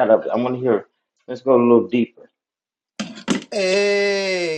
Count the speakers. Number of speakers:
two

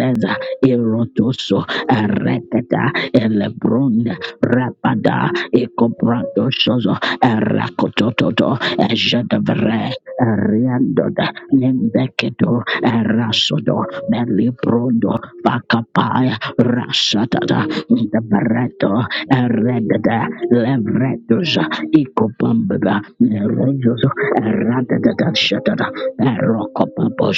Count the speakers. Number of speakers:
one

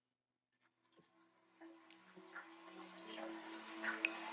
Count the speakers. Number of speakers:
zero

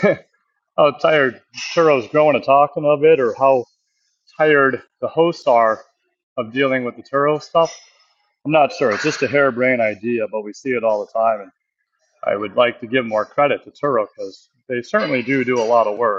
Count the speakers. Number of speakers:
one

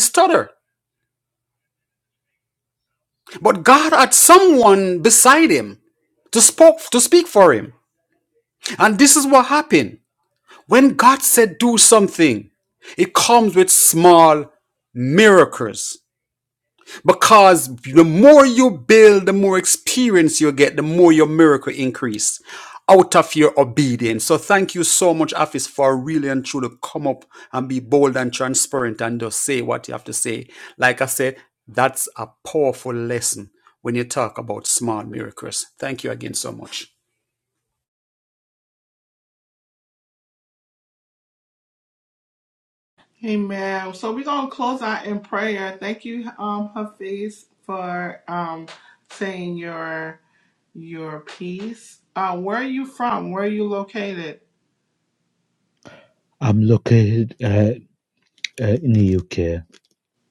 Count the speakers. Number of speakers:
three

